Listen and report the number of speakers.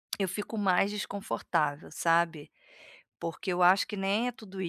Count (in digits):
1